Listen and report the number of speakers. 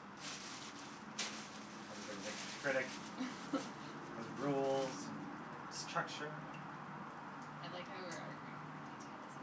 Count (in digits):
2